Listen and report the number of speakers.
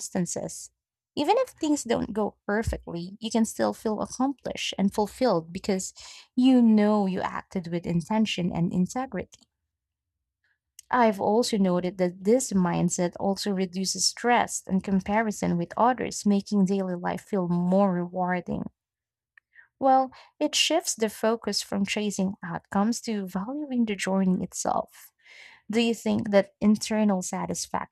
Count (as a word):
one